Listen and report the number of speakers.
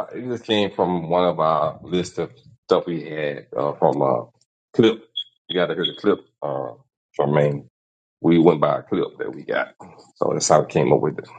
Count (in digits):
1